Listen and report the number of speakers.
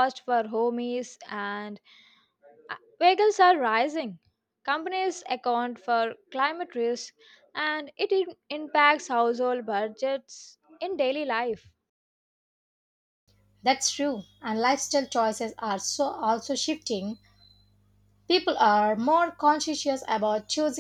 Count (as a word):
two